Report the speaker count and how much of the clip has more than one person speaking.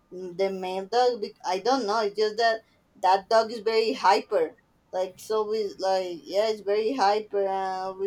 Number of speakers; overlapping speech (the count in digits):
1, no overlap